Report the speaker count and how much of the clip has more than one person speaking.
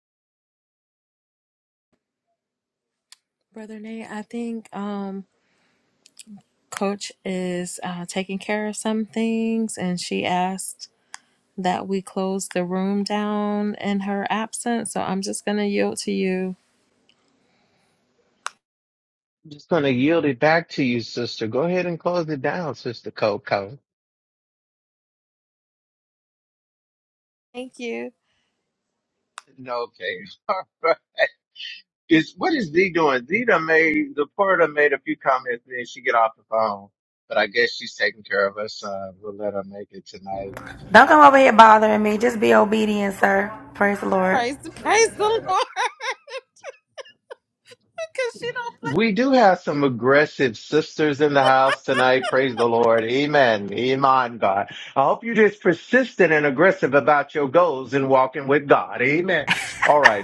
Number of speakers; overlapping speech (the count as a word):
three, under 1%